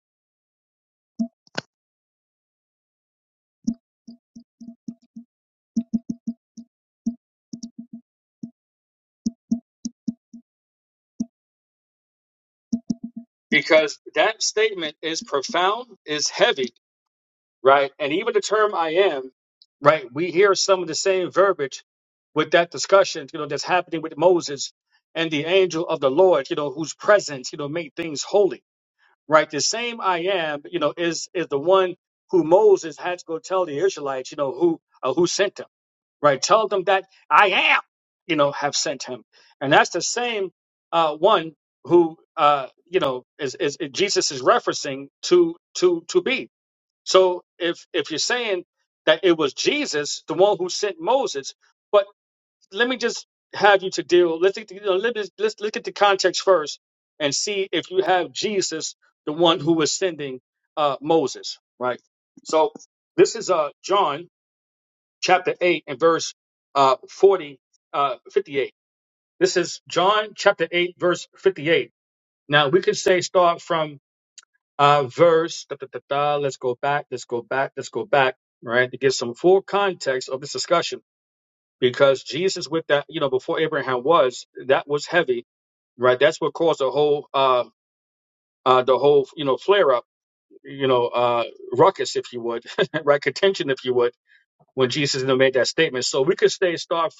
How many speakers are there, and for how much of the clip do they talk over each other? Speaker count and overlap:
one, no overlap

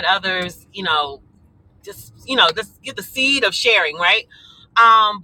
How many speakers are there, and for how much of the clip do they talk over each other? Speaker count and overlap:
one, no overlap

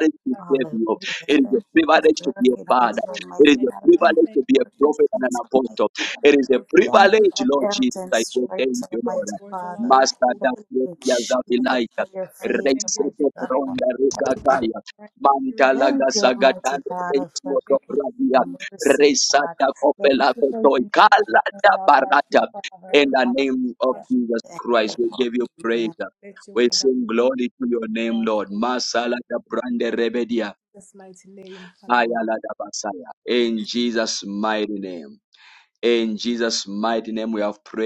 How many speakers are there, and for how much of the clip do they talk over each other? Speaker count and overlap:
three, about 52%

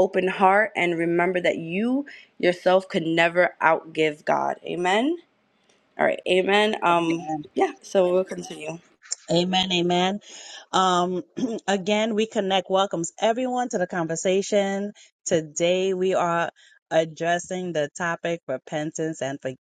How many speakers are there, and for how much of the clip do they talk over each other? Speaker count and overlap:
two, about 2%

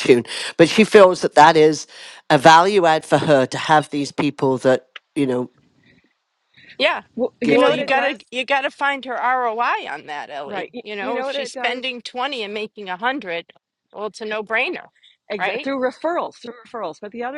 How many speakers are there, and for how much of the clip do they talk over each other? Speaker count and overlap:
three, about 13%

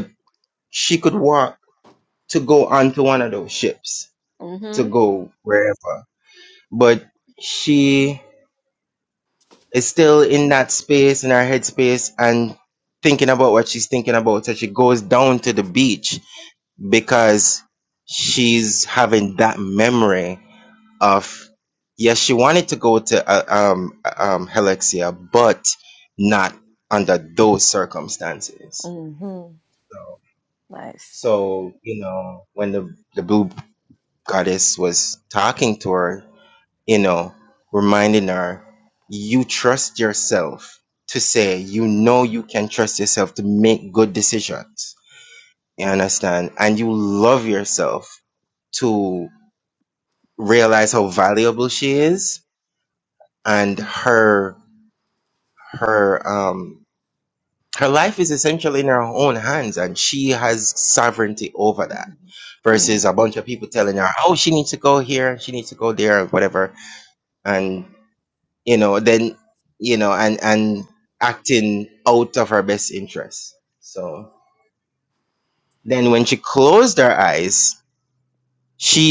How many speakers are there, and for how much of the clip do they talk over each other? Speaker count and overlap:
two, under 1%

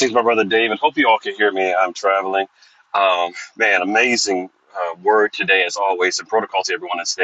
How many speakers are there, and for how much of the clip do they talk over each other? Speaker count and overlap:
one, no overlap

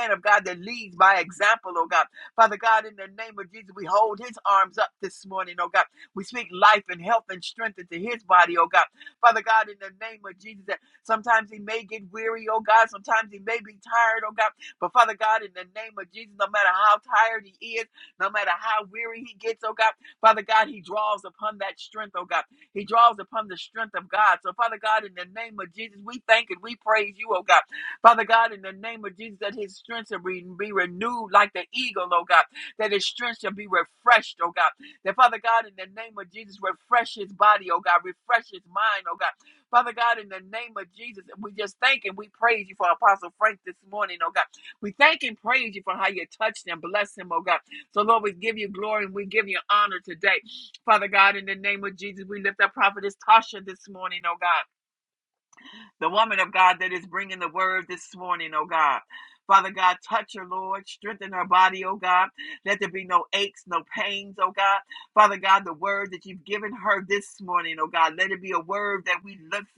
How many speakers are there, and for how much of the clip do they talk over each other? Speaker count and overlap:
one, no overlap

